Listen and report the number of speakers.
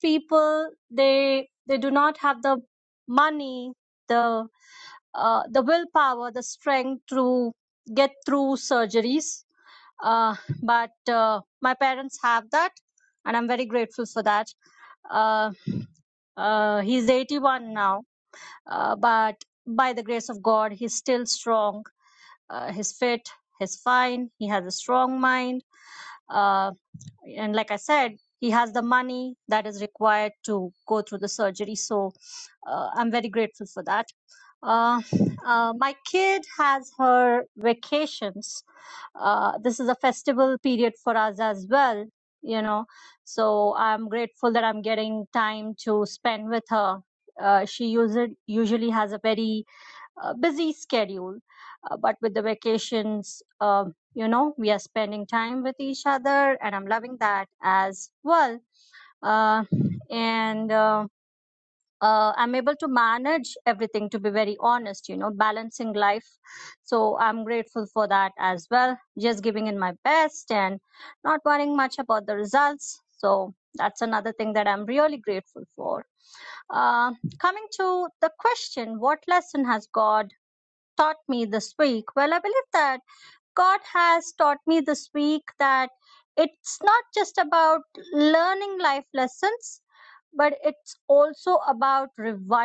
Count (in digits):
1